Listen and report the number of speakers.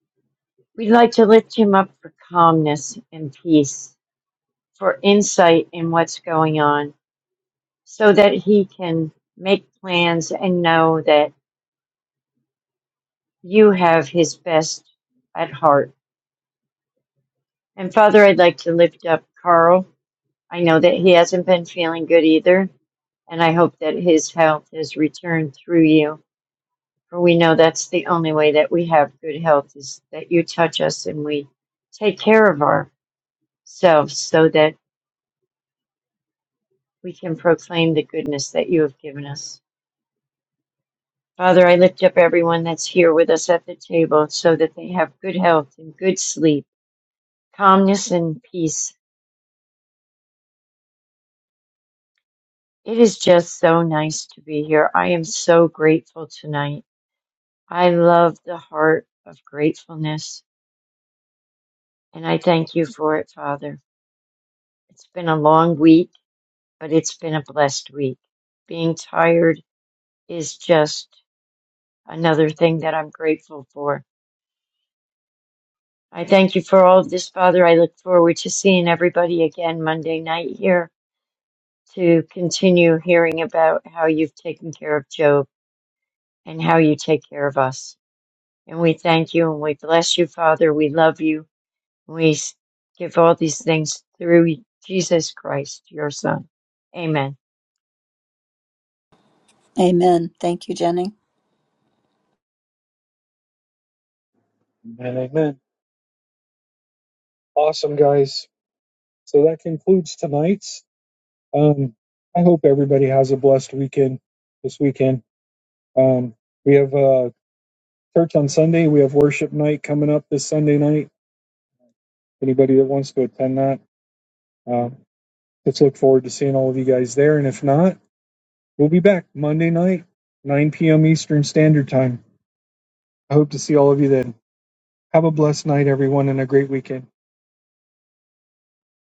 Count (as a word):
three